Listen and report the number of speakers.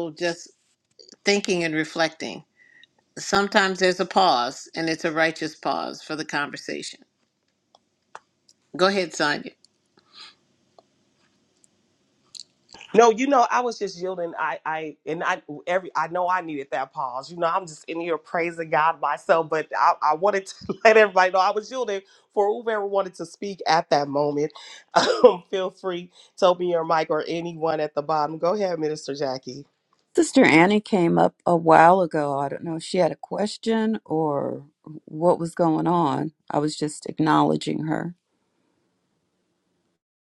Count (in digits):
3